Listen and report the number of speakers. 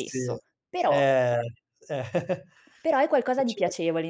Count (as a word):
two